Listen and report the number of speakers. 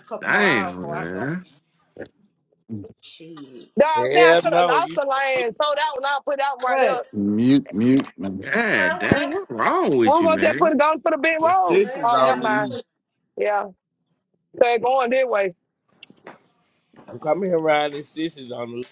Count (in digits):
5